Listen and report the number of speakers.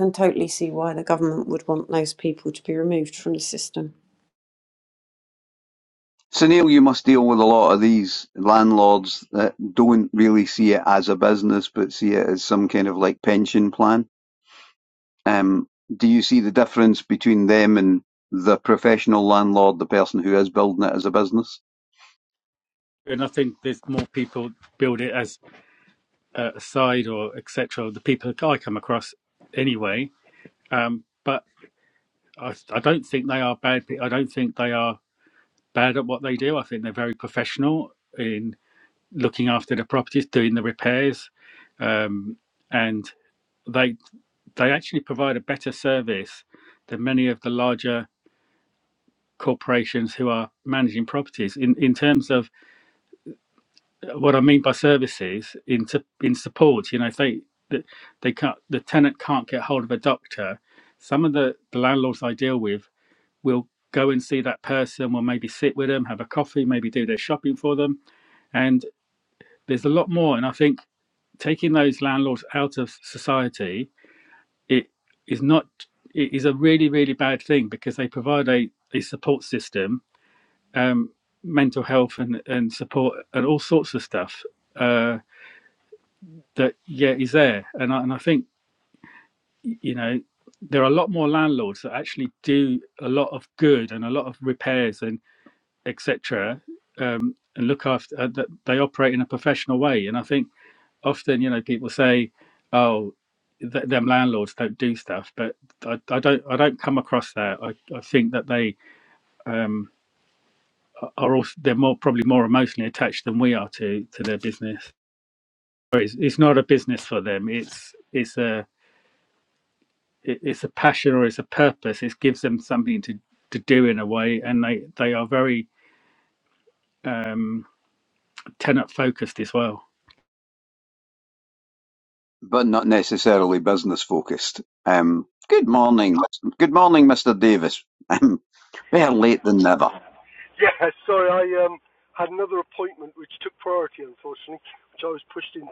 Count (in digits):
4